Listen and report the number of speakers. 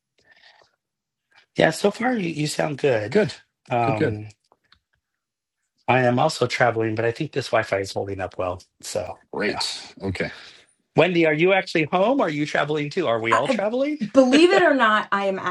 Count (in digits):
3